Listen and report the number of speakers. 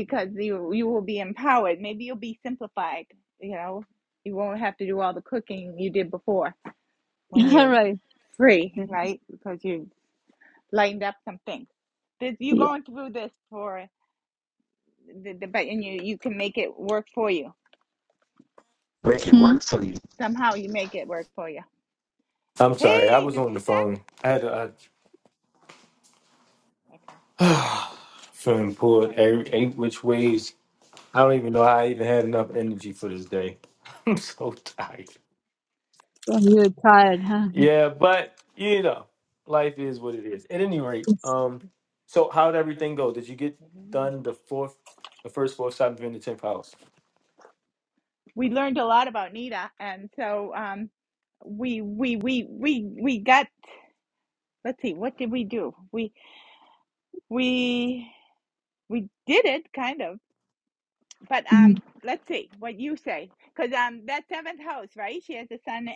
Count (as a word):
three